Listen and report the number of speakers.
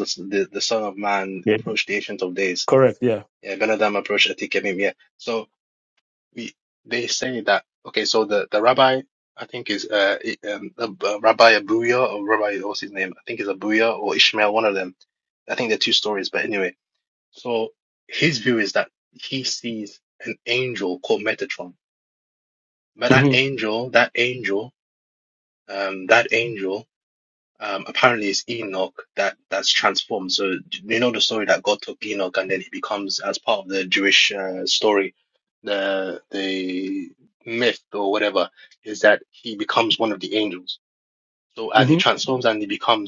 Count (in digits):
2